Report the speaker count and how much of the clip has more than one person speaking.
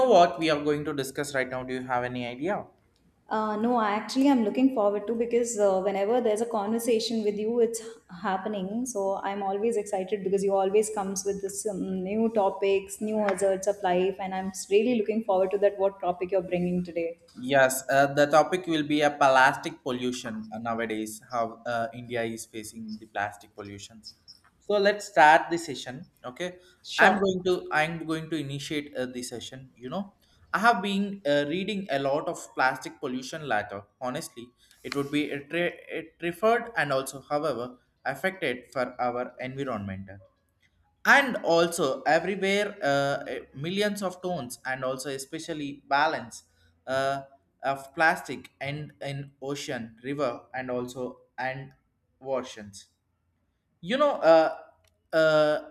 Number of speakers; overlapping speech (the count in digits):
2, under 1%